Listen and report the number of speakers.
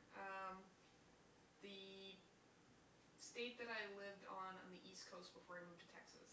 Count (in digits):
1